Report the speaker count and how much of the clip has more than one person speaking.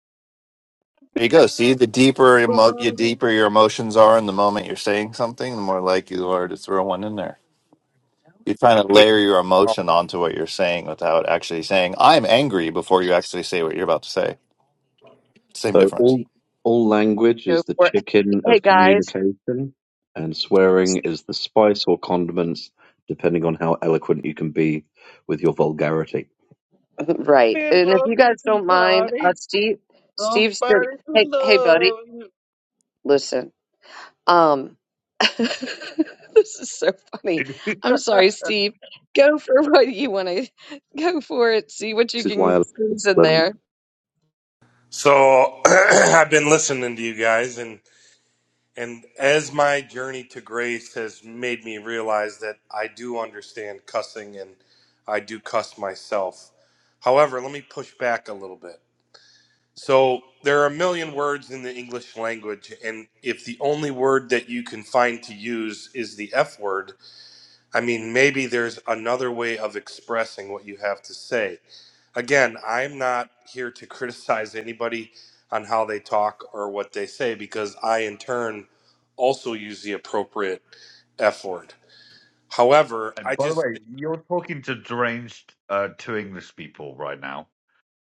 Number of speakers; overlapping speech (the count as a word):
five, about 9%